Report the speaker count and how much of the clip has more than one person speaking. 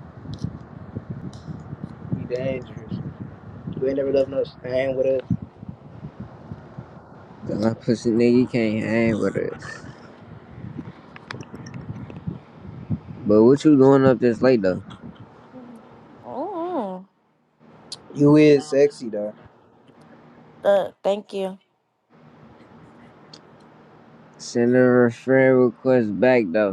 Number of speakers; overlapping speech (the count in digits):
3, no overlap